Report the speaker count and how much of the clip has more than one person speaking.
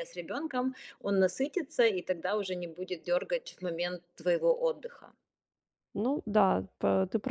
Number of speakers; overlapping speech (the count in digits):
2, no overlap